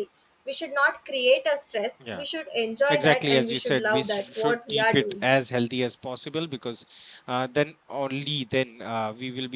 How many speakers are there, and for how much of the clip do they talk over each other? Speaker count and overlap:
2, about 27%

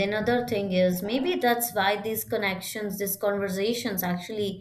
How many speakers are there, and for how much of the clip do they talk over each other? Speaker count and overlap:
1, no overlap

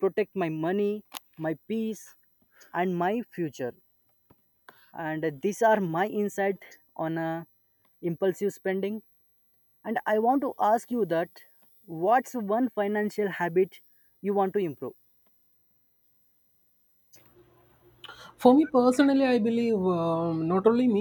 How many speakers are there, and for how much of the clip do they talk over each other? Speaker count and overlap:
2, no overlap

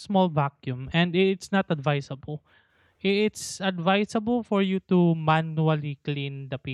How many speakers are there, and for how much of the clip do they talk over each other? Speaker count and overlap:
1, no overlap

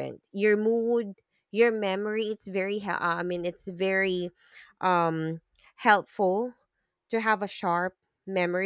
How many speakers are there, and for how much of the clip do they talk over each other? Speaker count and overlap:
1, no overlap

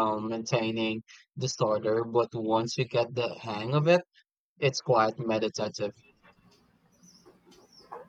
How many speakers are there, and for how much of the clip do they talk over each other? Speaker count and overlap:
1, no overlap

